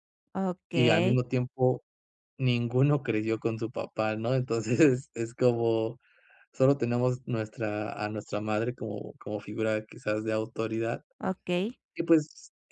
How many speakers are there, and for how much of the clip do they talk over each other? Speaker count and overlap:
2, about 3%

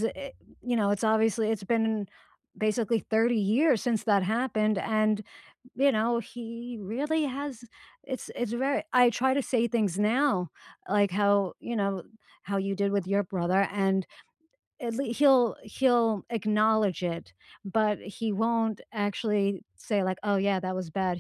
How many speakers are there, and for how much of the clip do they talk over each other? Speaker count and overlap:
1, no overlap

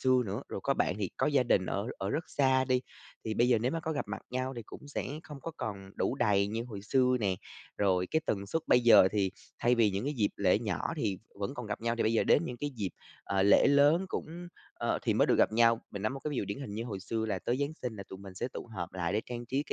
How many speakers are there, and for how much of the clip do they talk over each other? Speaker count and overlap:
1, no overlap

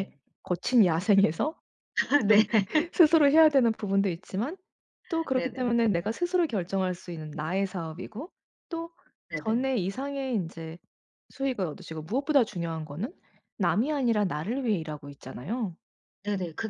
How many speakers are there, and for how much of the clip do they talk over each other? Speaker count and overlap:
2, about 4%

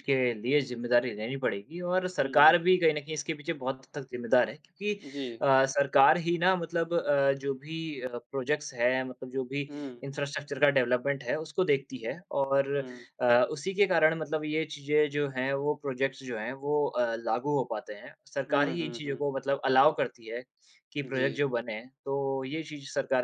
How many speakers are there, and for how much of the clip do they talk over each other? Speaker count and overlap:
2, about 6%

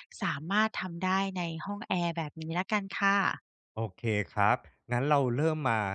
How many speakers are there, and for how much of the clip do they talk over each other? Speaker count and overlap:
2, no overlap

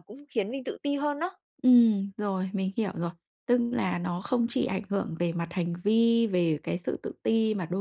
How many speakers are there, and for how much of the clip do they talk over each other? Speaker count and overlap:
2, no overlap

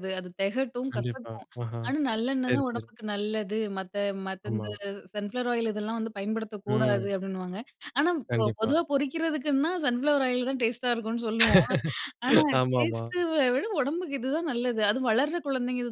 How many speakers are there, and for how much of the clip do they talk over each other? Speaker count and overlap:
2, about 19%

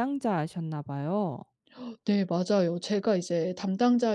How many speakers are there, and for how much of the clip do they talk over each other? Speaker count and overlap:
2, no overlap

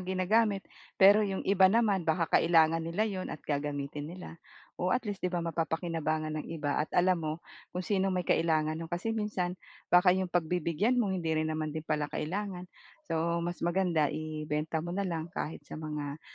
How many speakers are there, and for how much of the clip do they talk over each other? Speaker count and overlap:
1, no overlap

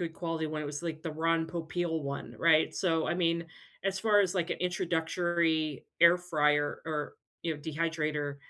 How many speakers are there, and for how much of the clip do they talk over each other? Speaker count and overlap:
1, no overlap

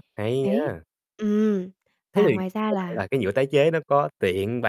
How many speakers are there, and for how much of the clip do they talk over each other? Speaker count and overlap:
2, about 23%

